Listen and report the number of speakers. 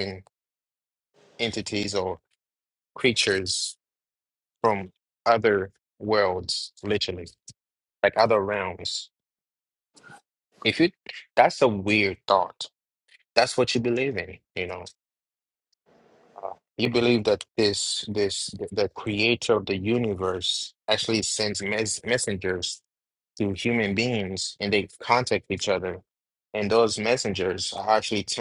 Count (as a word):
one